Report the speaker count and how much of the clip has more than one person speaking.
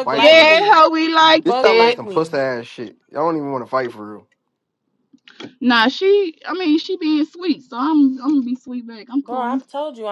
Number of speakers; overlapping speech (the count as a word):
three, about 18%